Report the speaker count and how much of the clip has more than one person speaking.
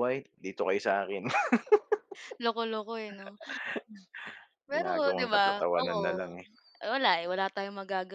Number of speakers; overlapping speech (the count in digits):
2, about 19%